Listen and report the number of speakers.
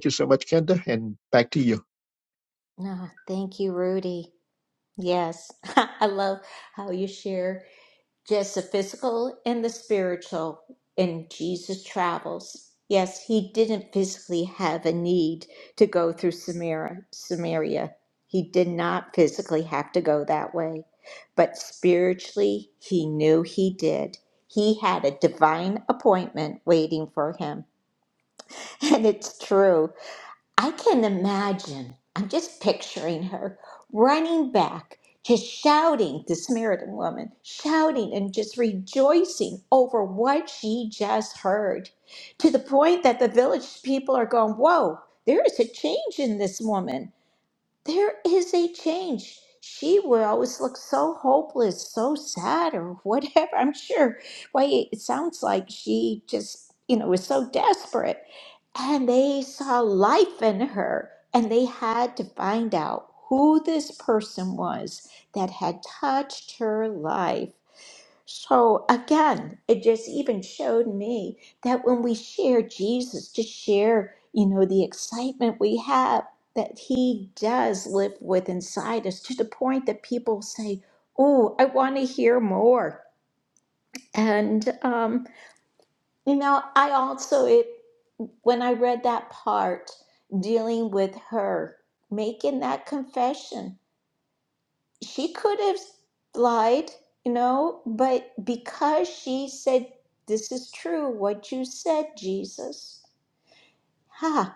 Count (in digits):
2